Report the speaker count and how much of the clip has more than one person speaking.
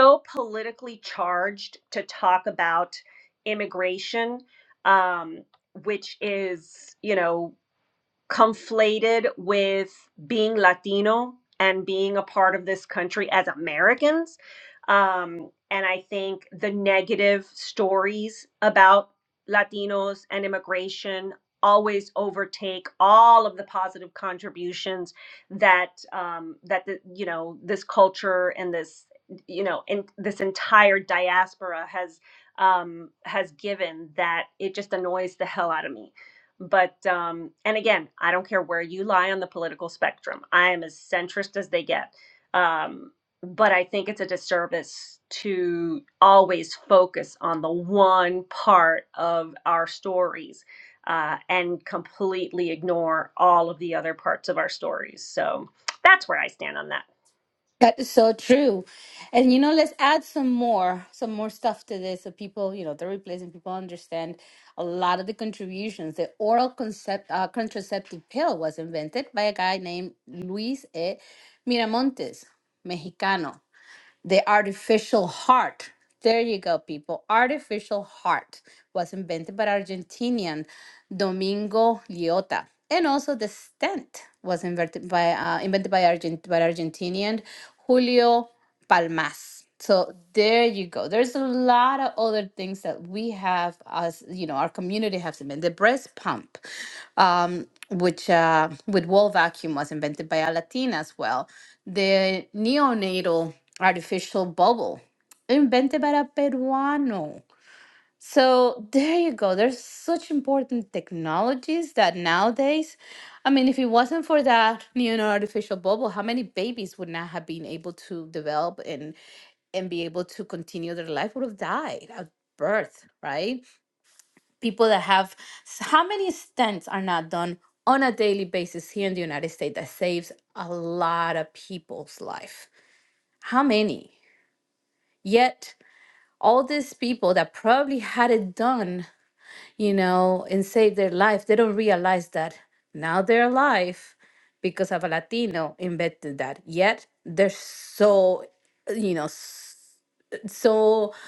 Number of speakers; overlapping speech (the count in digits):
2, no overlap